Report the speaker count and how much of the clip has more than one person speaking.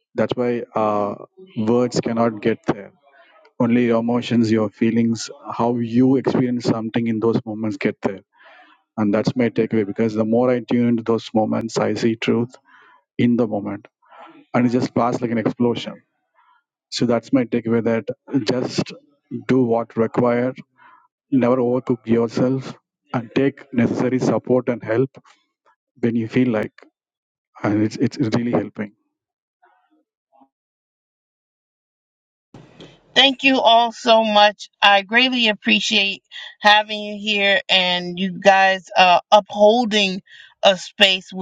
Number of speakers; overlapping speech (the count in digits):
2, no overlap